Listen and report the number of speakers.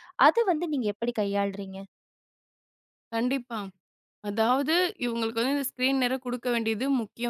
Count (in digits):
2